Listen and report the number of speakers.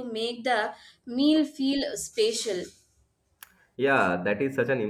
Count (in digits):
2